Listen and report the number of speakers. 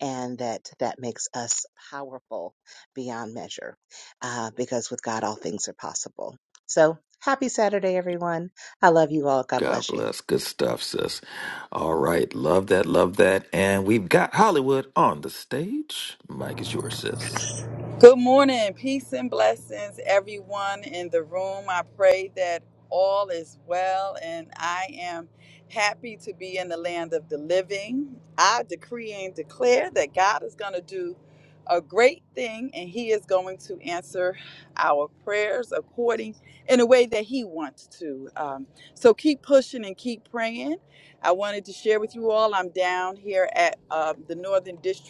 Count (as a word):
three